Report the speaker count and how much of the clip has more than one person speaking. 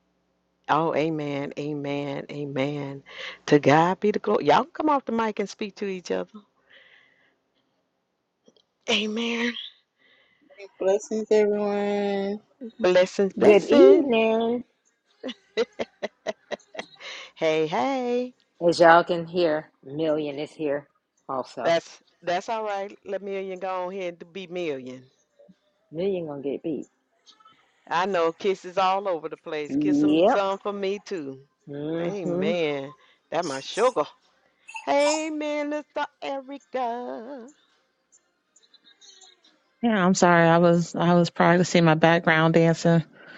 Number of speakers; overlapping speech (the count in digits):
4, about 5%